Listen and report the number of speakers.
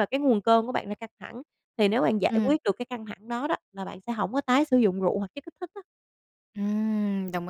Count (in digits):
2